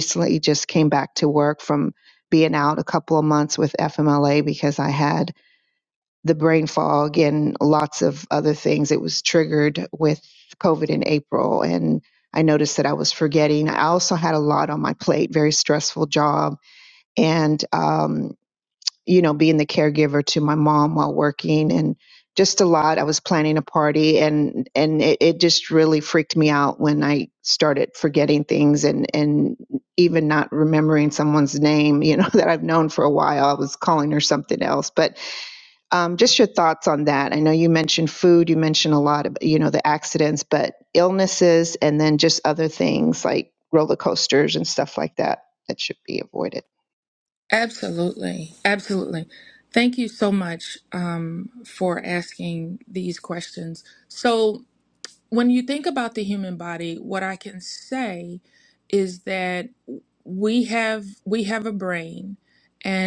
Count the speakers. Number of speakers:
2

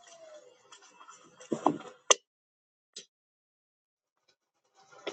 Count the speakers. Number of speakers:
0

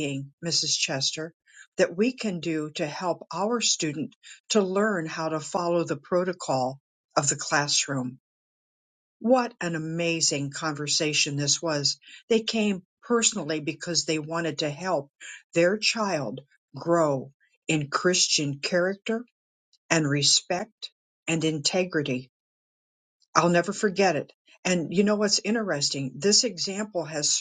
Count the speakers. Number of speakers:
1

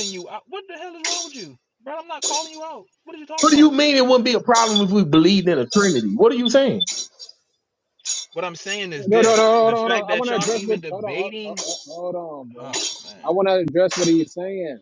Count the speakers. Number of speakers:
3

